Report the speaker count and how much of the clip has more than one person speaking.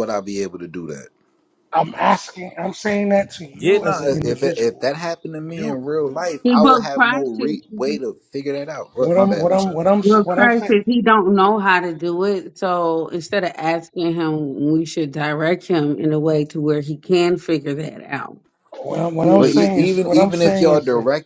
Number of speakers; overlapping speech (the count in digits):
3, about 28%